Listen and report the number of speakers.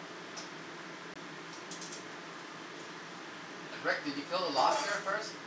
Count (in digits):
1